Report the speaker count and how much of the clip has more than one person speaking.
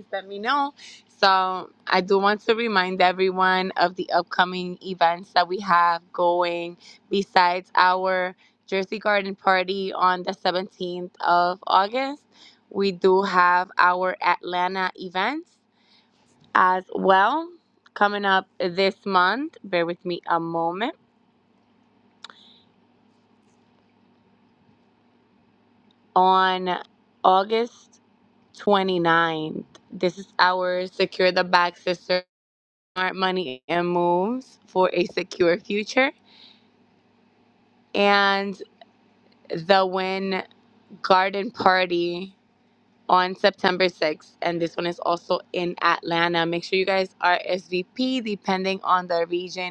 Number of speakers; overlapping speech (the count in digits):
1, no overlap